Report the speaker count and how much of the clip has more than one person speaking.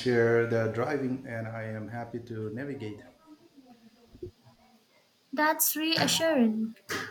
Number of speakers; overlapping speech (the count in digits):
2, no overlap